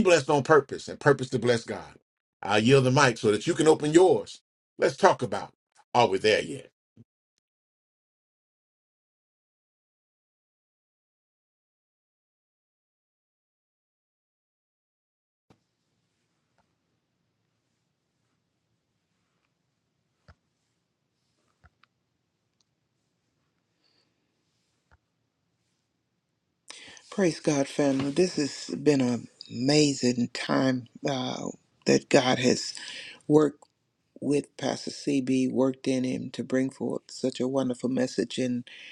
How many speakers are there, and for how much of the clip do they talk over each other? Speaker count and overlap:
two, no overlap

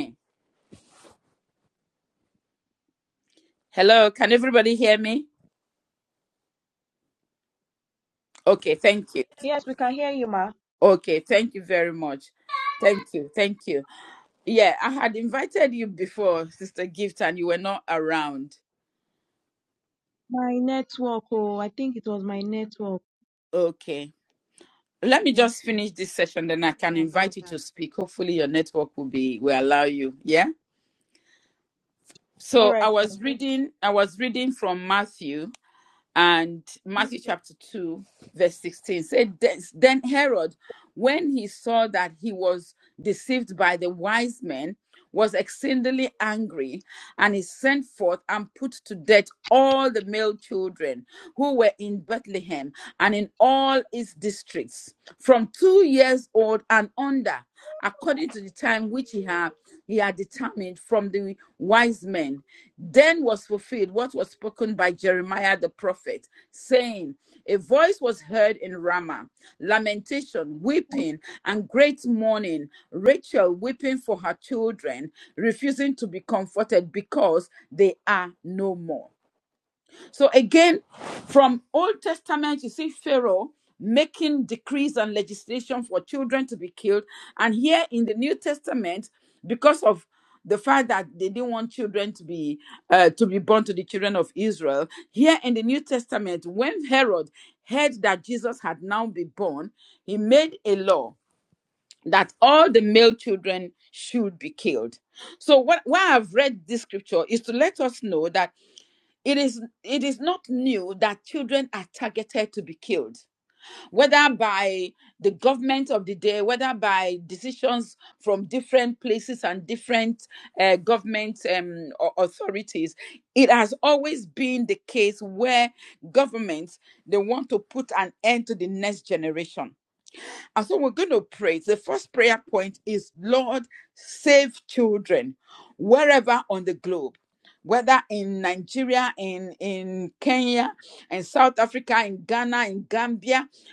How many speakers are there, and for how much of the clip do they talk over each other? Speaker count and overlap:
two, about 1%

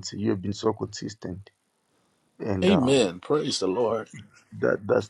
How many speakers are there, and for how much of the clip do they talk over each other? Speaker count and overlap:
two, about 7%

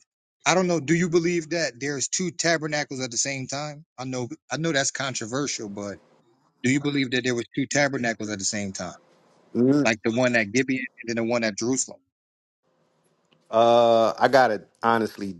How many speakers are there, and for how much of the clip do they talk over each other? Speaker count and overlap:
two, under 1%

